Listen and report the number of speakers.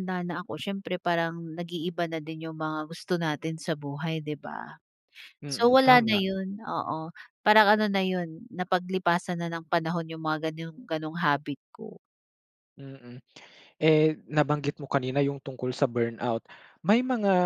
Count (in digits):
2